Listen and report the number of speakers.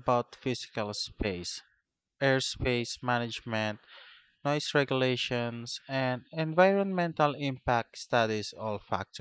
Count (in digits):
1